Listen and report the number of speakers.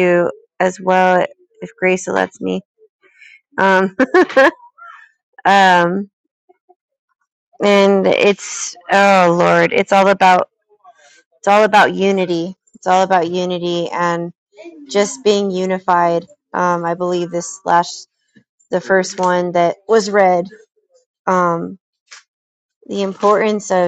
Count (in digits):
1